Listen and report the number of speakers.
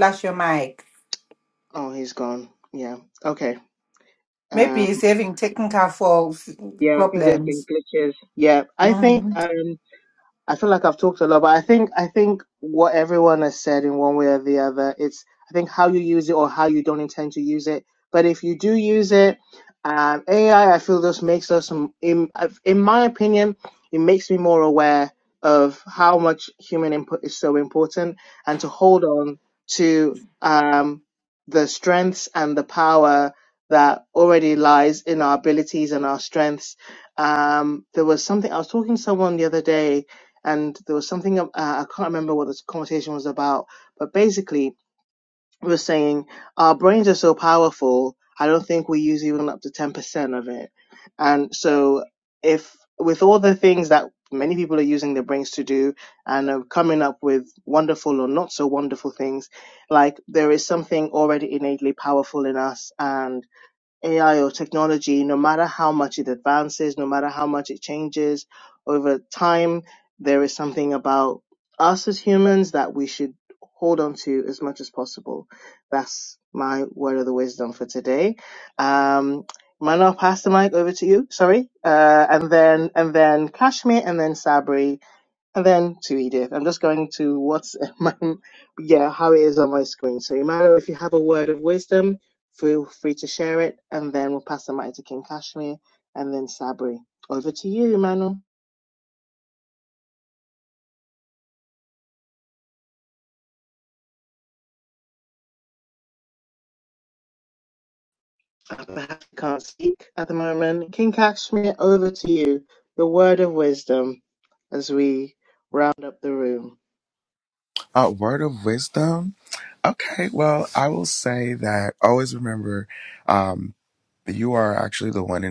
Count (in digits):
3